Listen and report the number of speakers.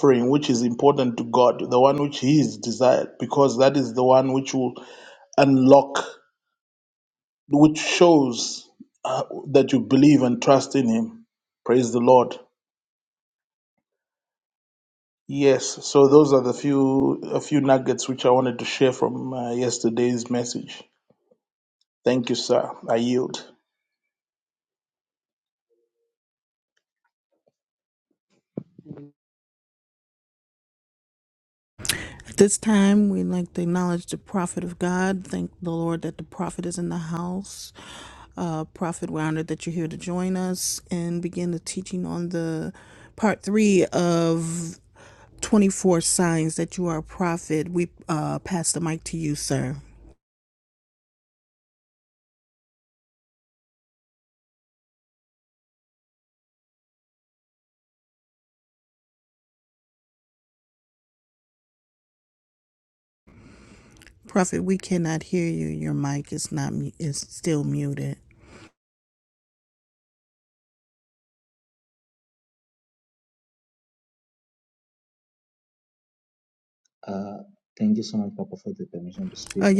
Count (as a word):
three